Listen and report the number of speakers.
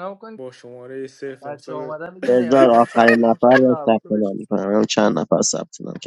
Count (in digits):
3